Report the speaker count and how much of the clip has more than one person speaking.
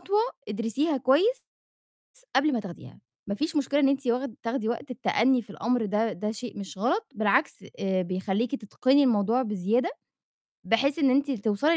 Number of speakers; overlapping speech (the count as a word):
one, no overlap